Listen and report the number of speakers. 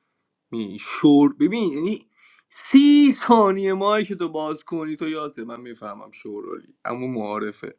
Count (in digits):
1